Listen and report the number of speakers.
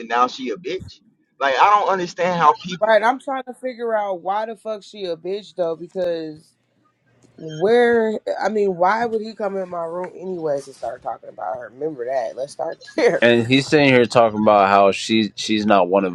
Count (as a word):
three